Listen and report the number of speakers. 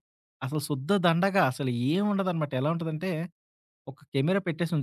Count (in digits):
1